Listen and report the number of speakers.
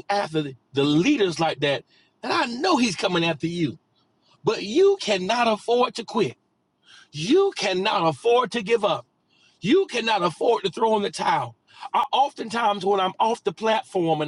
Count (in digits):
1